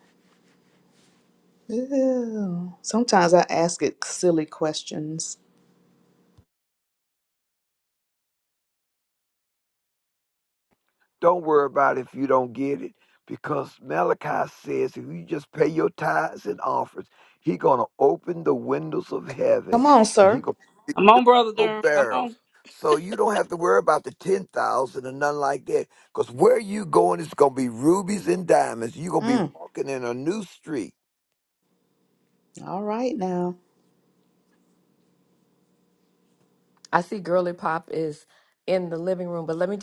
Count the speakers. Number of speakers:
four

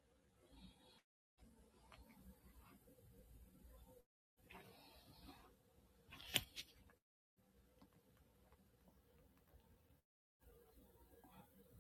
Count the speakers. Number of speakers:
zero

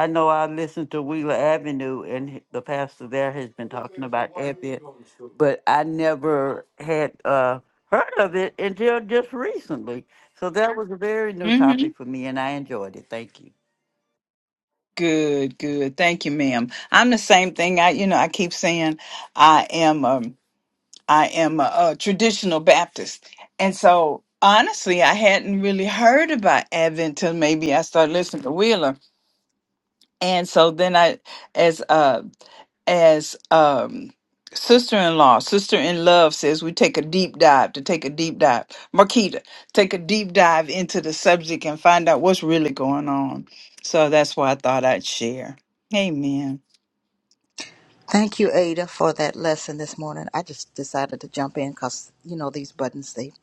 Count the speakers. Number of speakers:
three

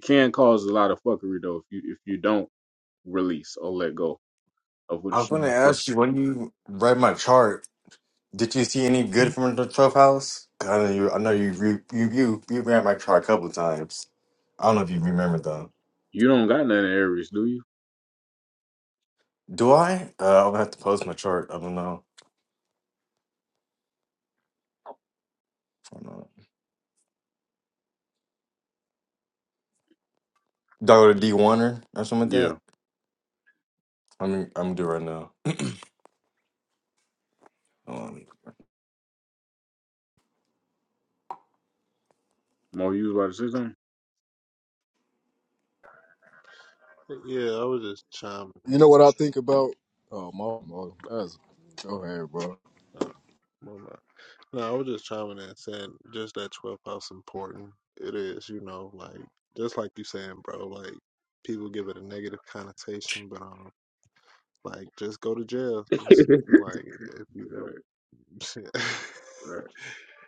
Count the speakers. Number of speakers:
four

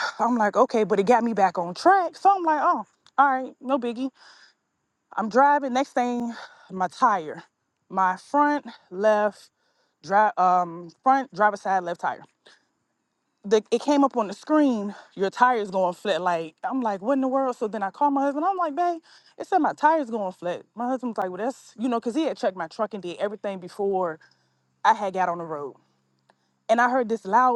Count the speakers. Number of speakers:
one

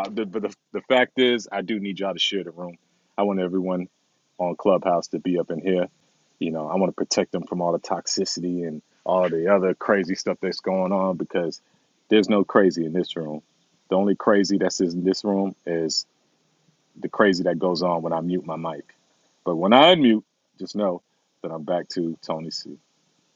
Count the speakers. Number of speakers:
one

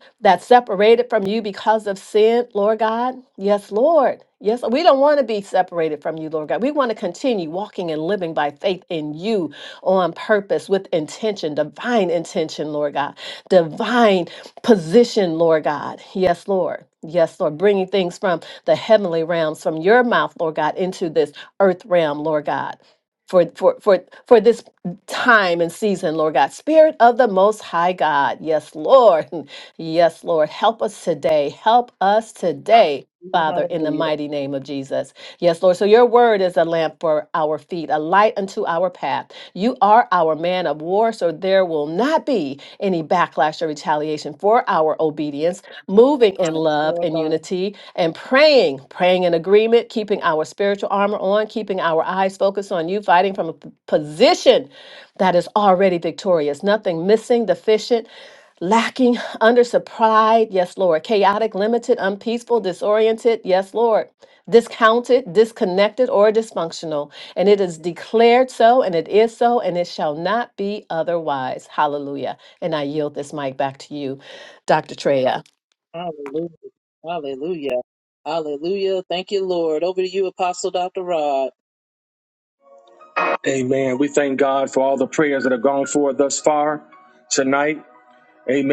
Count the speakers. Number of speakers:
three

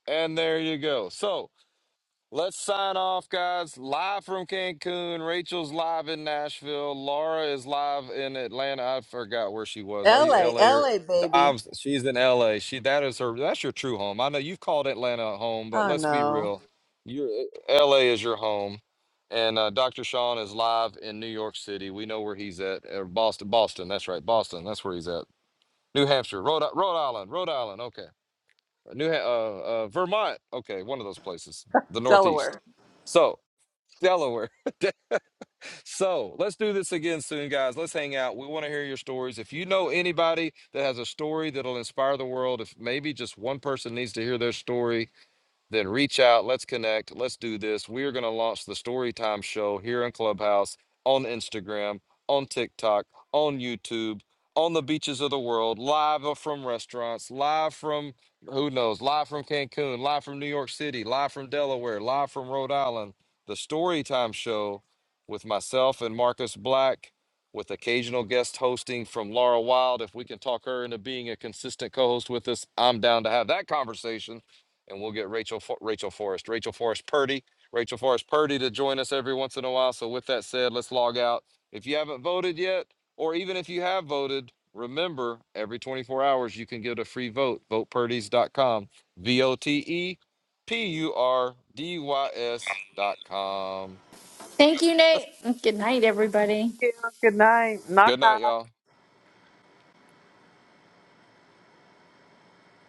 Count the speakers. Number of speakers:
three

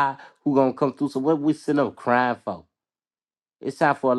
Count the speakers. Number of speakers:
one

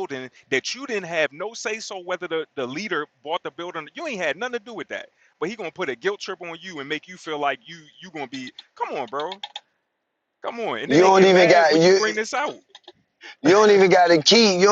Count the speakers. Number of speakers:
two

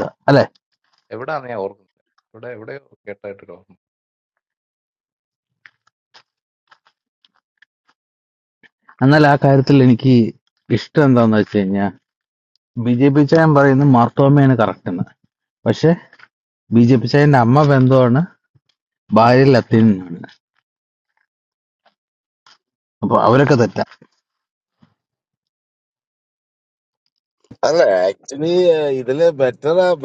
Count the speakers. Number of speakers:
three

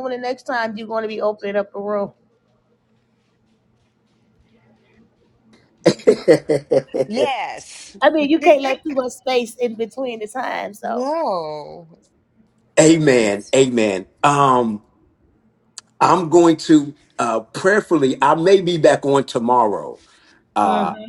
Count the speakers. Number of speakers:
three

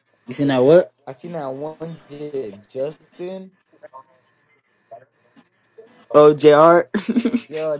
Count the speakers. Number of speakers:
two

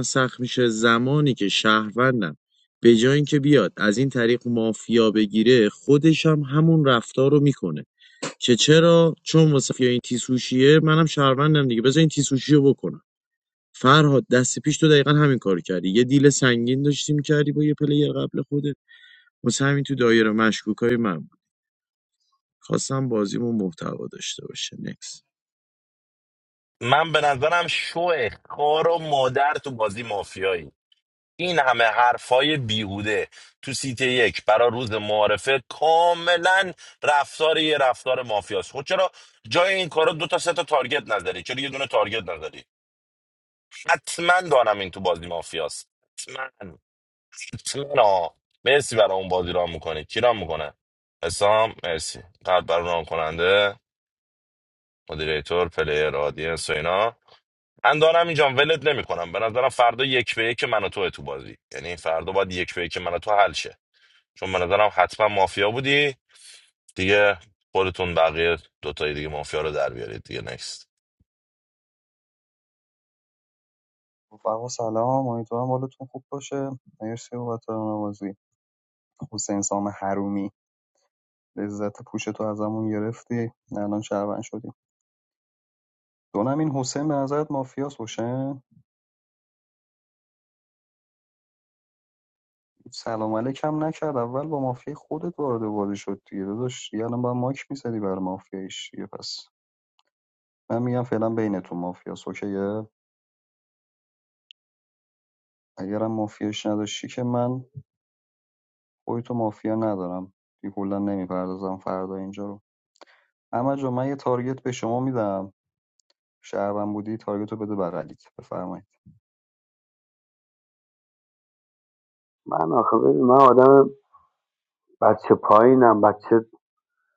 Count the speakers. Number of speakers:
four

